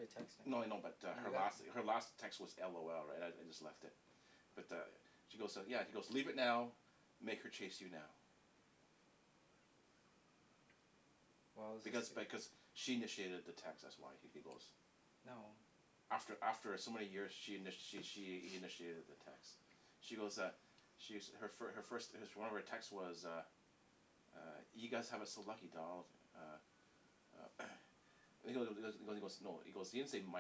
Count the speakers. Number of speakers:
2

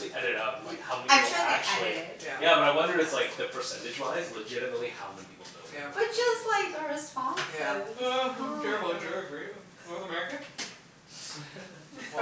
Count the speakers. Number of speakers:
3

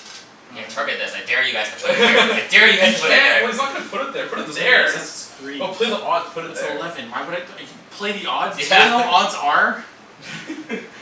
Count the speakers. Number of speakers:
3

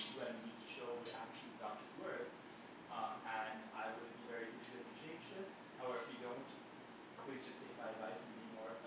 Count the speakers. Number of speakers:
1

